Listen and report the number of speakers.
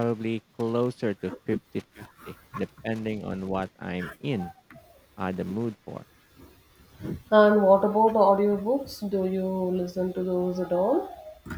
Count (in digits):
2